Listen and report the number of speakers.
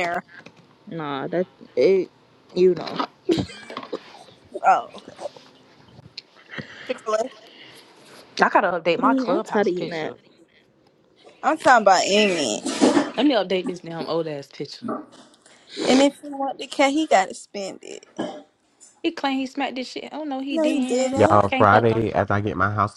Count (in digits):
4